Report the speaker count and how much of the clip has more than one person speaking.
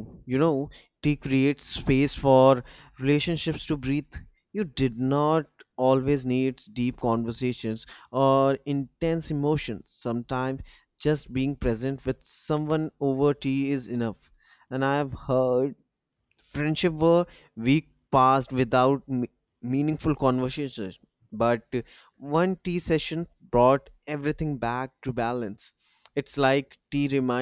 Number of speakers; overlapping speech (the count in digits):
1, no overlap